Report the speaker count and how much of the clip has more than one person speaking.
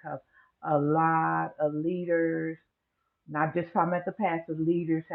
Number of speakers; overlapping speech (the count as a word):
one, no overlap